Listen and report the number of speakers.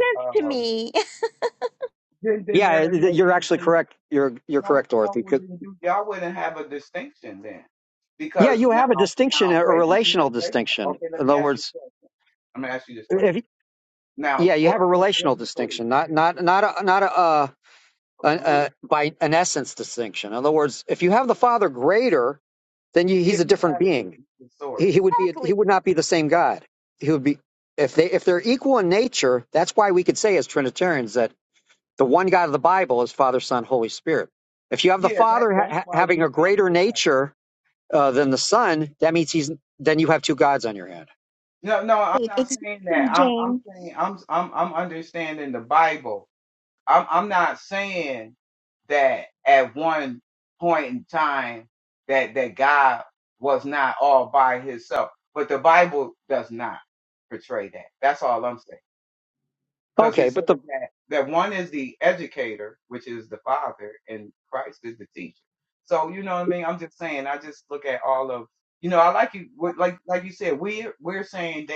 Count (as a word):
three